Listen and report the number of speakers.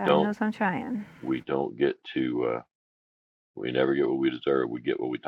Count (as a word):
two